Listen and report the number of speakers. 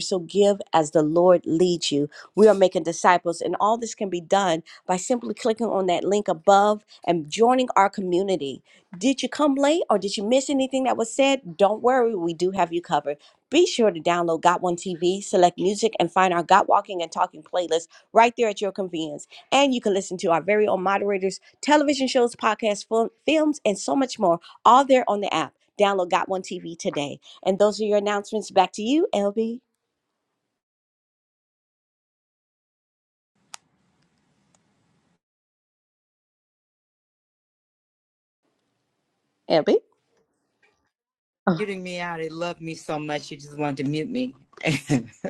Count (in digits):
2